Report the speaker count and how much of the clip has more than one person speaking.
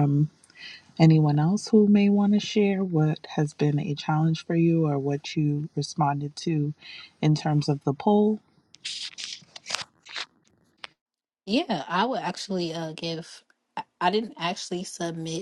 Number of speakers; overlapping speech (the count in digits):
2, no overlap